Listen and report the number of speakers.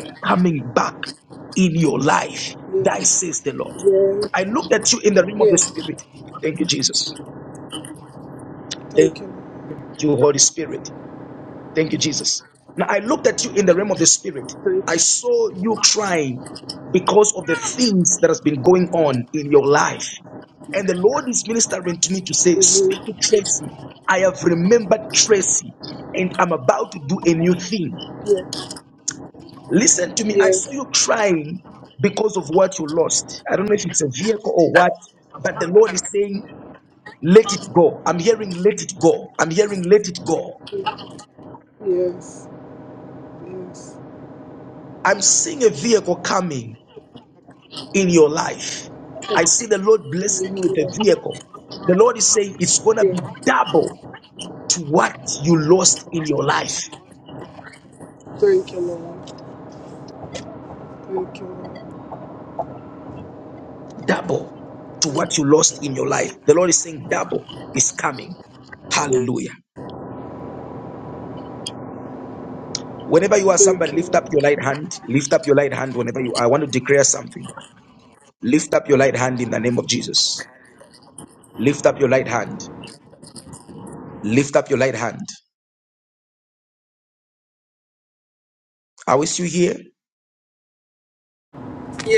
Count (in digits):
2